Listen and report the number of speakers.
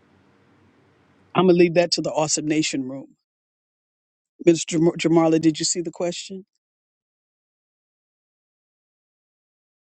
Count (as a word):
one